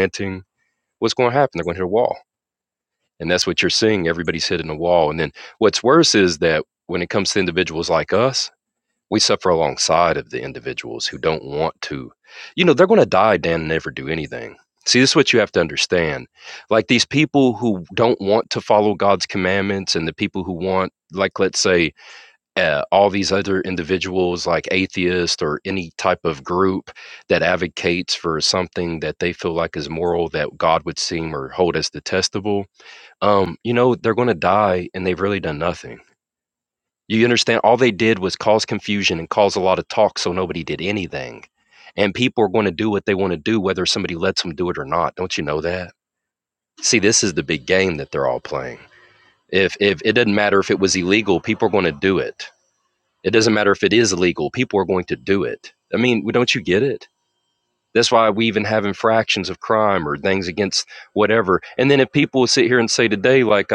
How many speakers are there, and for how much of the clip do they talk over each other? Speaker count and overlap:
1, no overlap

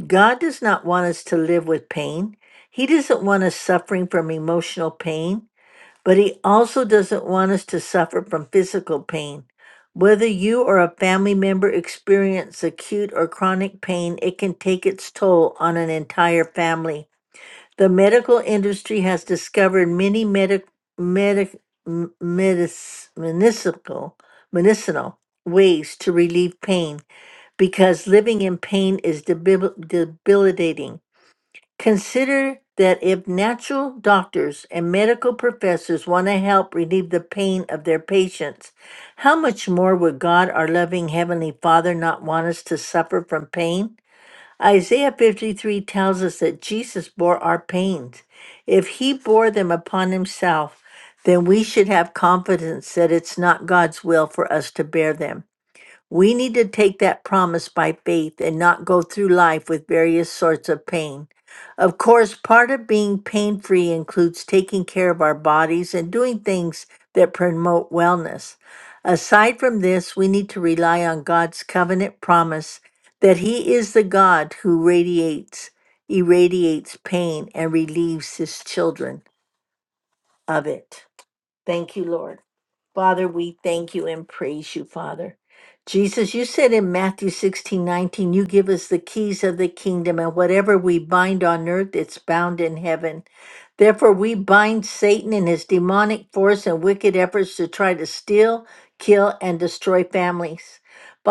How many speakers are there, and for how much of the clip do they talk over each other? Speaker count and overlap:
1, no overlap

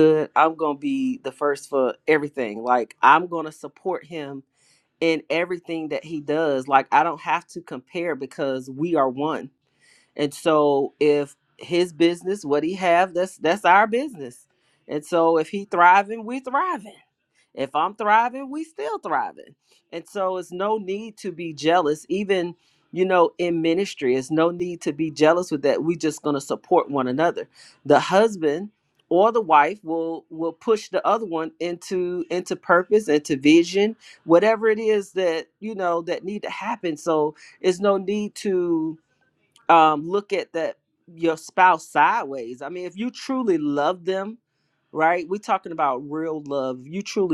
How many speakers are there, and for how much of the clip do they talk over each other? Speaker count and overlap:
1, no overlap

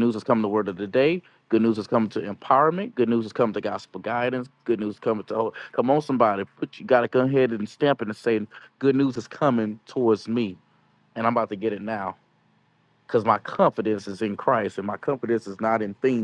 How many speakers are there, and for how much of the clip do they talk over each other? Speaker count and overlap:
1, no overlap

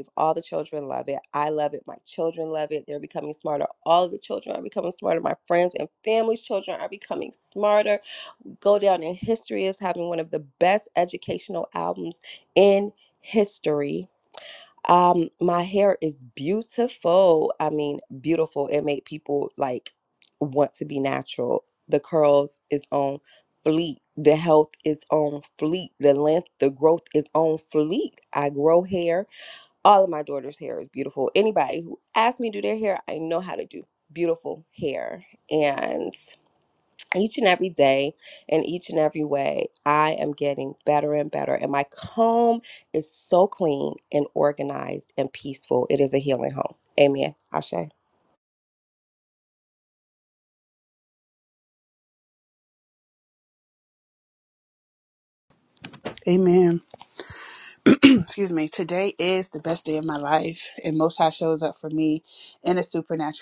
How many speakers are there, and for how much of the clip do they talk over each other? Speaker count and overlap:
2, no overlap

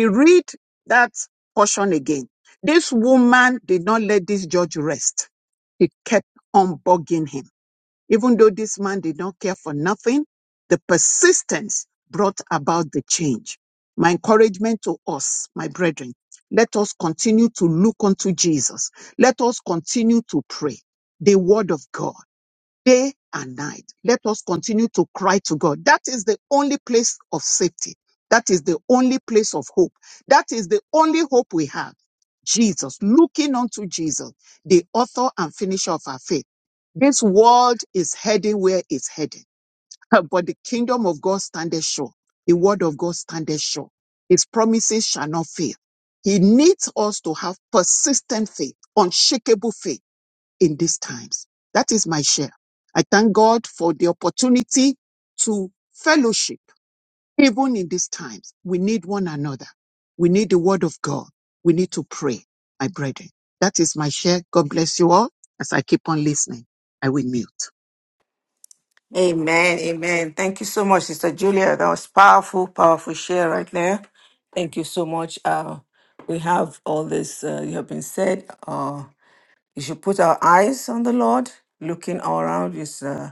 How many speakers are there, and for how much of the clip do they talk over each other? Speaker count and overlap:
2, no overlap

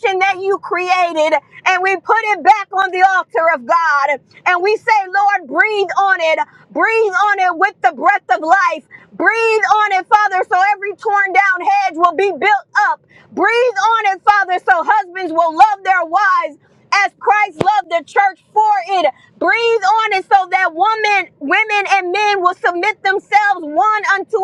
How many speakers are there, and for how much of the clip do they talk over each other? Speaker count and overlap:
1, no overlap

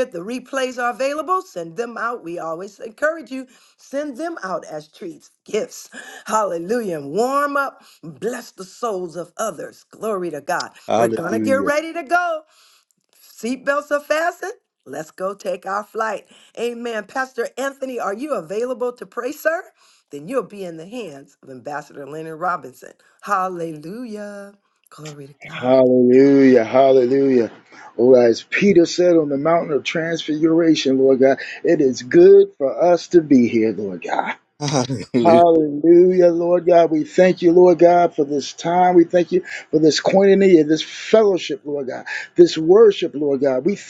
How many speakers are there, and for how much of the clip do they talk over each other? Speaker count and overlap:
3, about 3%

